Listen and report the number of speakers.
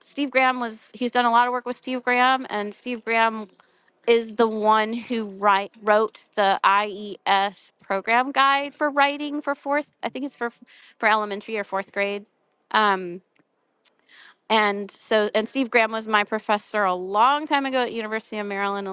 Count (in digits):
1